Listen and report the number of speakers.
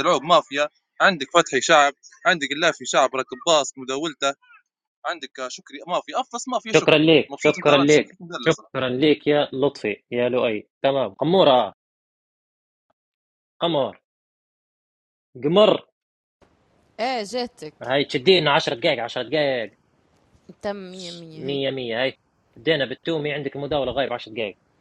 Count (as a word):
three